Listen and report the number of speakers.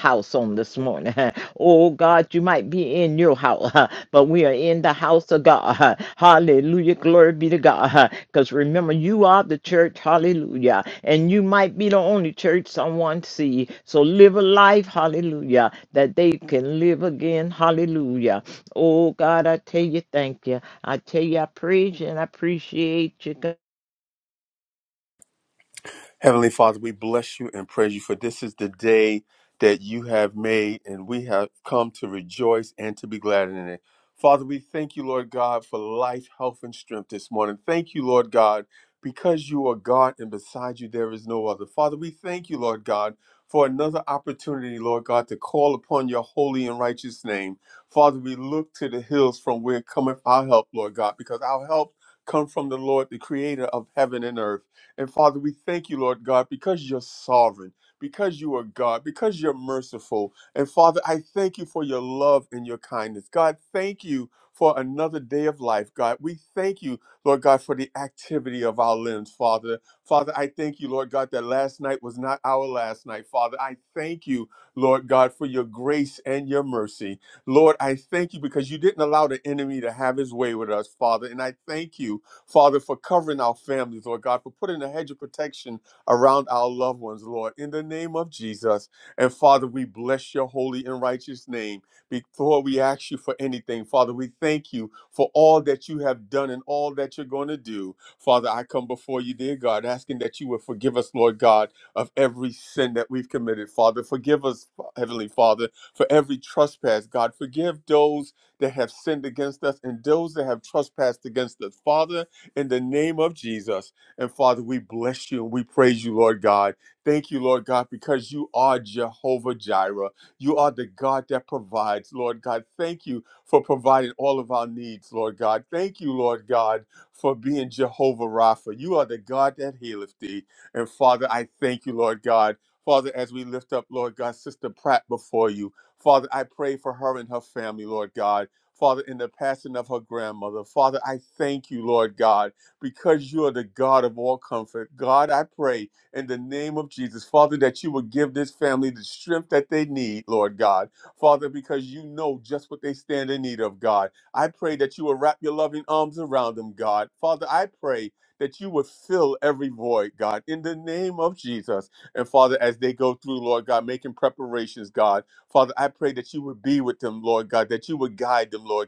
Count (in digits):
2